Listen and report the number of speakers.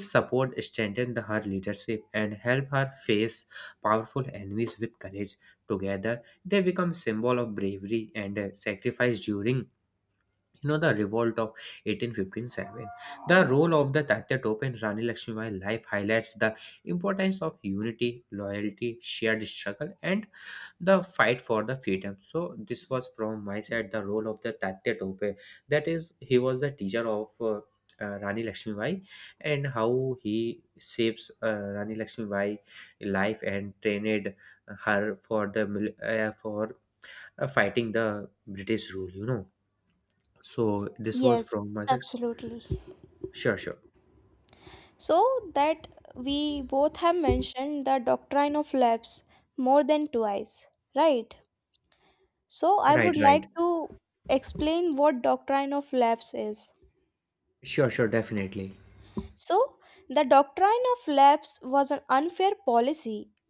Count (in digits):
2